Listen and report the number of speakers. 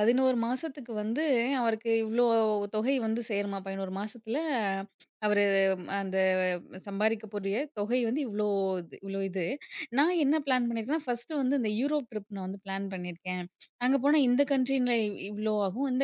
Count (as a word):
one